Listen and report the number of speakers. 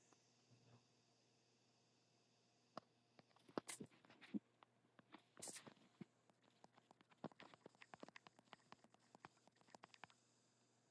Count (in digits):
0